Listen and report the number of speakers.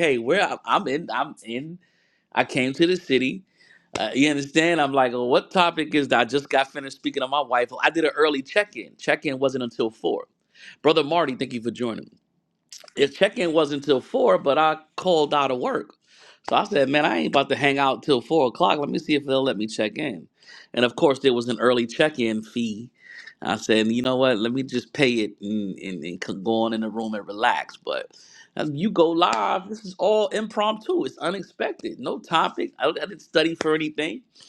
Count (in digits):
1